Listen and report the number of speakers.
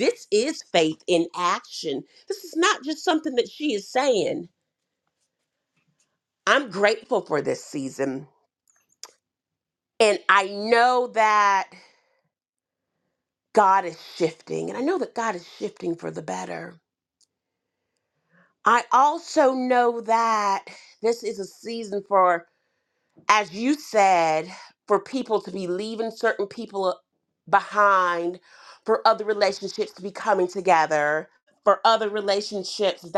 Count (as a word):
one